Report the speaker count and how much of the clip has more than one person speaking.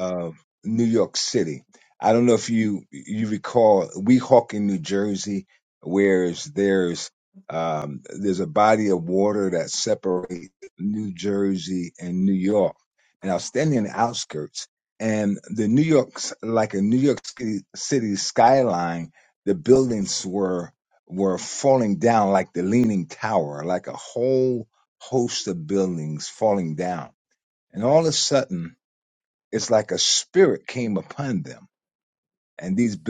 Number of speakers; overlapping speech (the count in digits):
1, no overlap